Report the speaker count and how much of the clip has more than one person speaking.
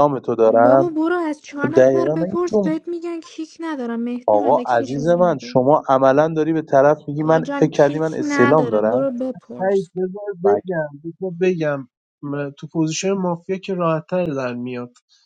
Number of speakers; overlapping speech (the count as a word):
three, about 33%